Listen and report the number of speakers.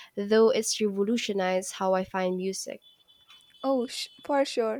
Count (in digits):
2